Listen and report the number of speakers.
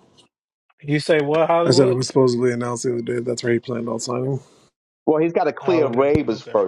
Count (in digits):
3